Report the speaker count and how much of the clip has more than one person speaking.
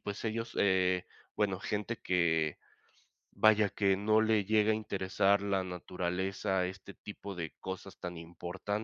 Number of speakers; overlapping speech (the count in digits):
1, no overlap